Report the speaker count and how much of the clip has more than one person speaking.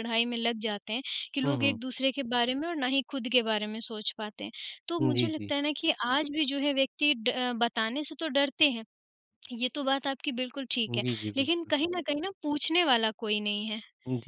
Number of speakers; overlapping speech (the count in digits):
2, about 9%